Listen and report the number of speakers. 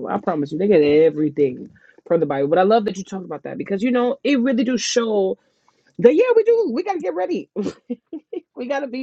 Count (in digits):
1